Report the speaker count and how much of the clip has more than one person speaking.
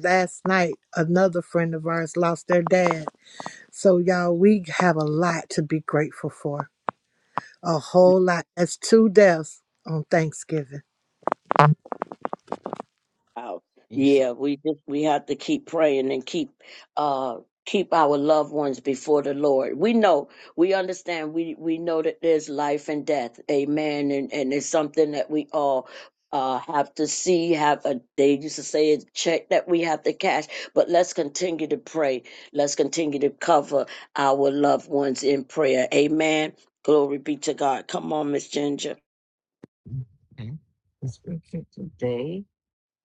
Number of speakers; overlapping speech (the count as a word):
three, no overlap